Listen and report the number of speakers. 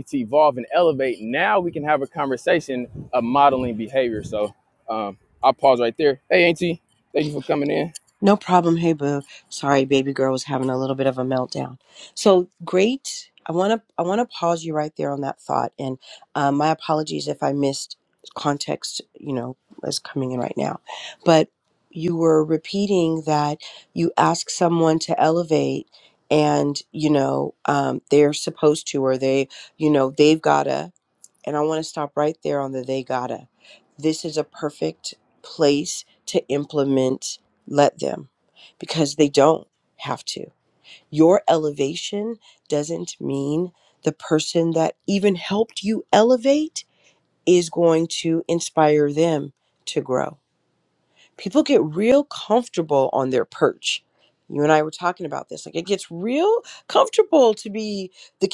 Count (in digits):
2